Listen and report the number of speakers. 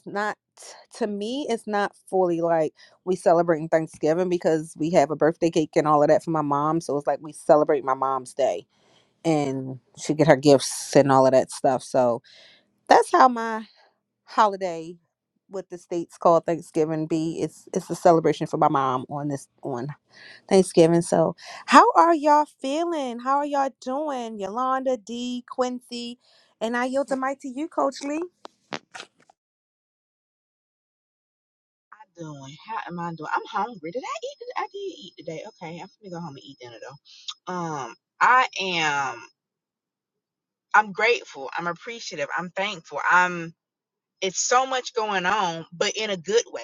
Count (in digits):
2